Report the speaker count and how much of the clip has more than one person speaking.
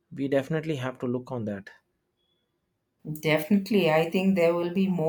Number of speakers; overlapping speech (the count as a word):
two, no overlap